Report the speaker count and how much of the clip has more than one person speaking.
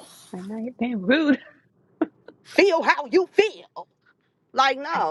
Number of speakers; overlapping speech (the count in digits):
2, about 3%